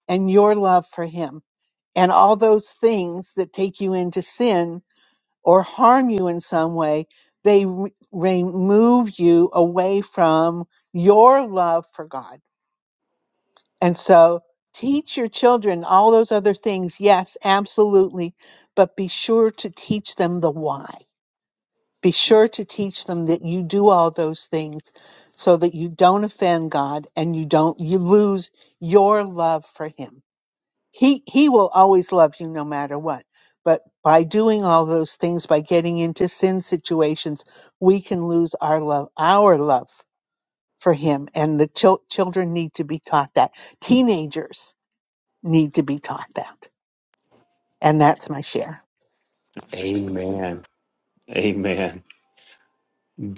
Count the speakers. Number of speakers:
two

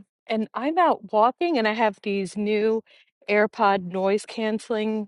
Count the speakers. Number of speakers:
one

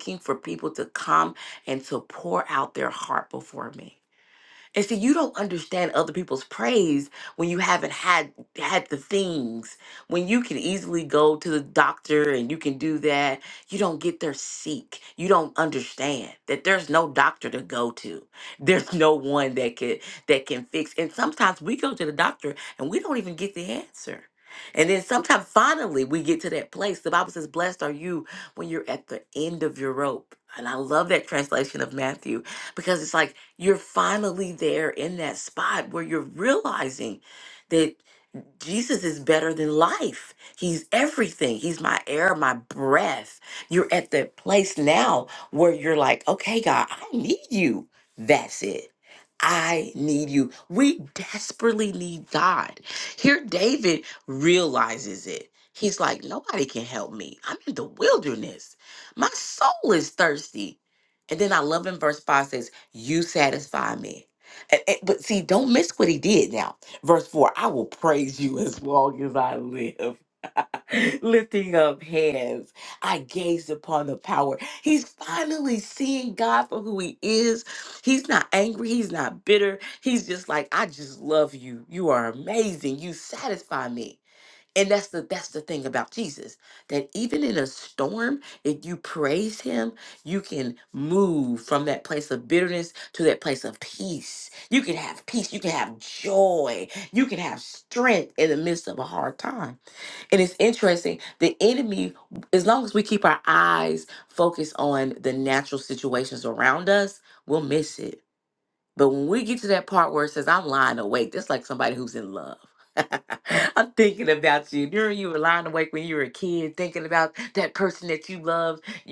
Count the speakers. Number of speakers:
one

